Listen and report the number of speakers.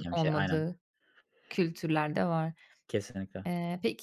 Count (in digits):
2